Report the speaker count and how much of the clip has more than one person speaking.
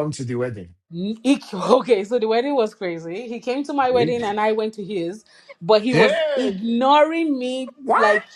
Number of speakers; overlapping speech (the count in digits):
2, about 12%